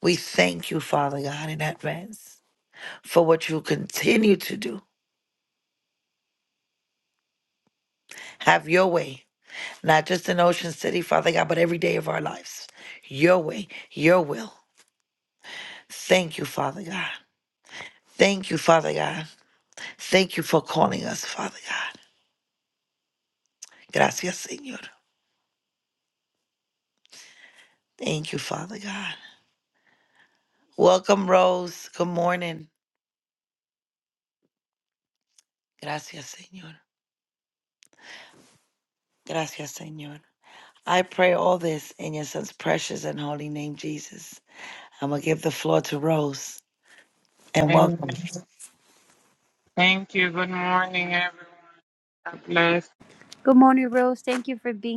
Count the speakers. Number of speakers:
three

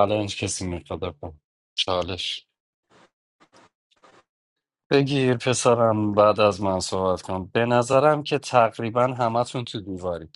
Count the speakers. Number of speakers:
one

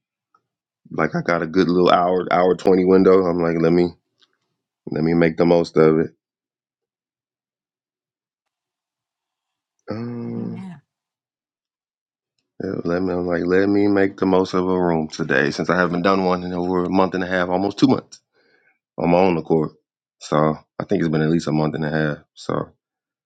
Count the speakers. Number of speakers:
one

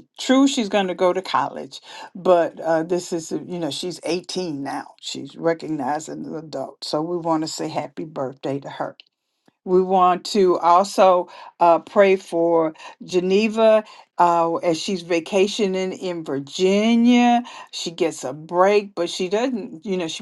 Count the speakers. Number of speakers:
one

